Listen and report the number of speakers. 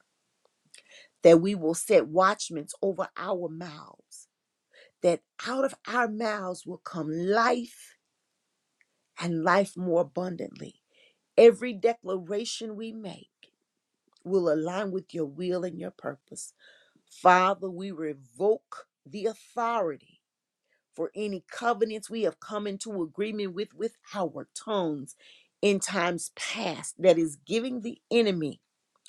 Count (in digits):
1